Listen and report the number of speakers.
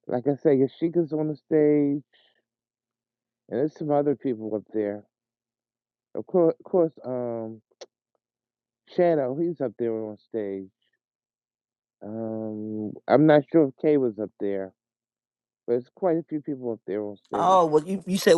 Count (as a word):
two